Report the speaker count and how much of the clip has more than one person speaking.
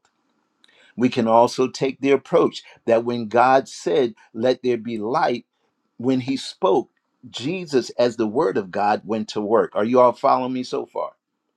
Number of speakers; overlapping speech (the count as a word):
one, no overlap